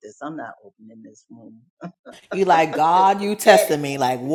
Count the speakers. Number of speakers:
two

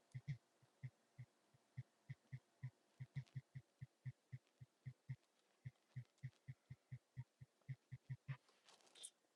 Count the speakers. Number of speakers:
zero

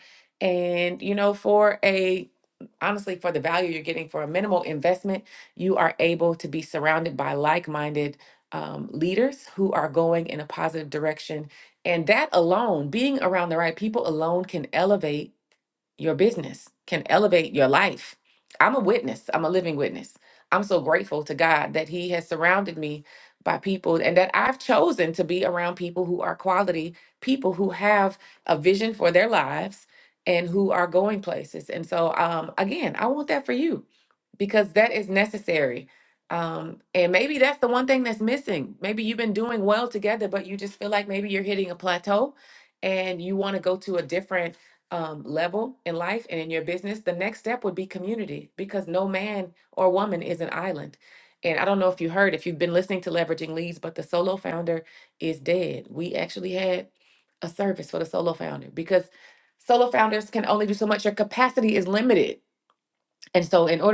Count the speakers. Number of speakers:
one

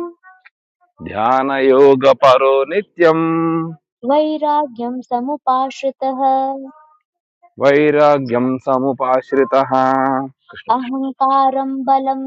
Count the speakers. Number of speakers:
two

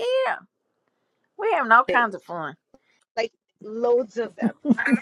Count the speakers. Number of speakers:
two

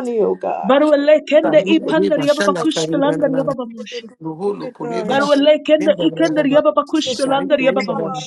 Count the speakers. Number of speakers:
three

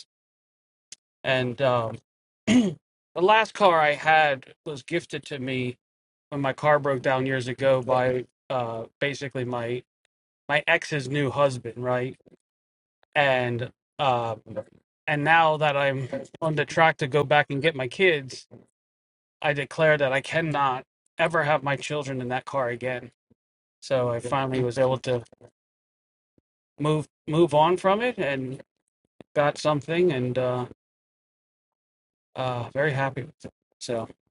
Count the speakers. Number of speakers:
one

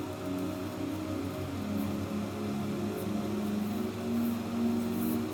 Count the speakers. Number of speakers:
zero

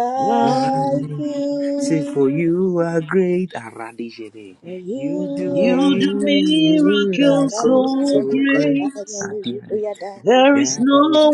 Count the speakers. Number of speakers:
three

